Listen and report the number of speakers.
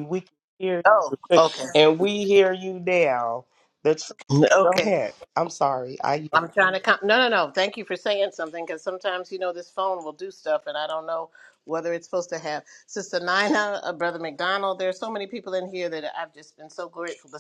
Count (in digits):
2